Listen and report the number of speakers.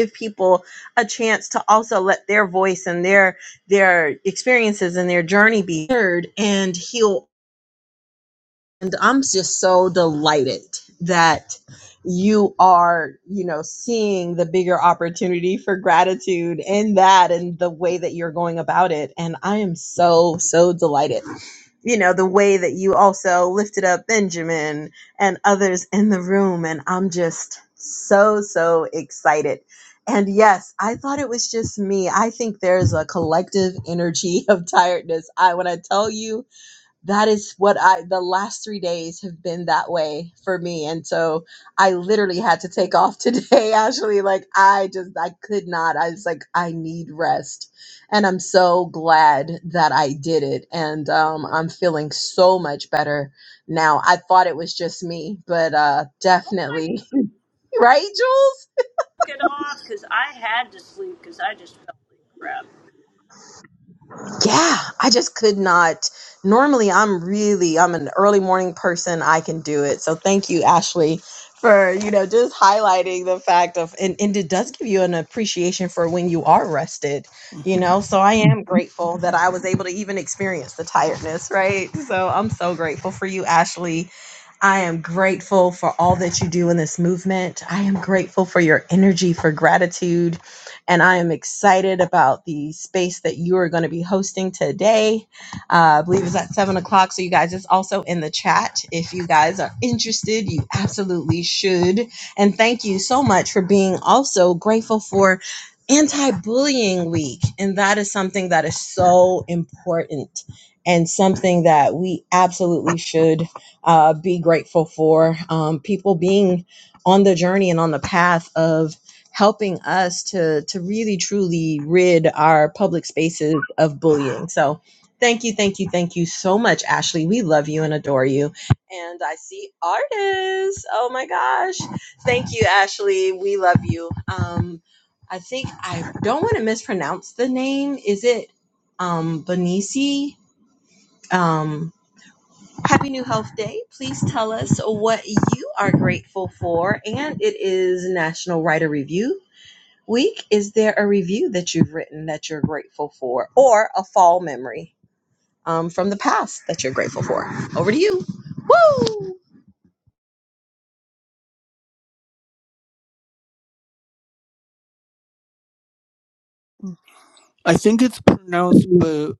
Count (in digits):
3